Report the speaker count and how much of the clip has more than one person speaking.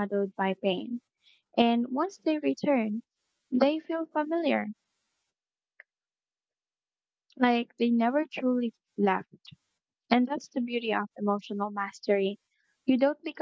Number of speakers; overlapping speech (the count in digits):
1, no overlap